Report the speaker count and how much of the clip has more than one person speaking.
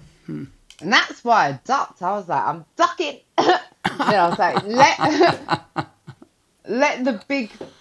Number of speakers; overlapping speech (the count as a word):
one, no overlap